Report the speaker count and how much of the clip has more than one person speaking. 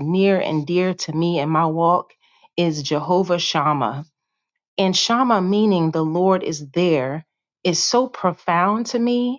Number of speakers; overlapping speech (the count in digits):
1, no overlap